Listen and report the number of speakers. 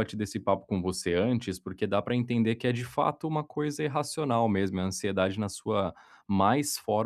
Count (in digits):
1